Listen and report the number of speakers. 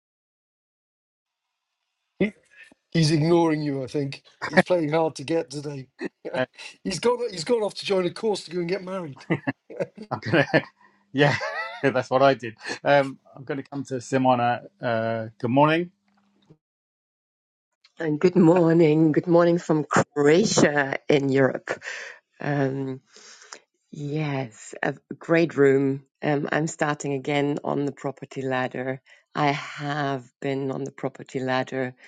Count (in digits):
3